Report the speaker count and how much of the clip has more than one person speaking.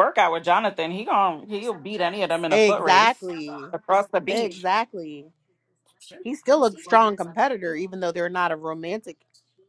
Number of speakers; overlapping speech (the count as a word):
two, about 9%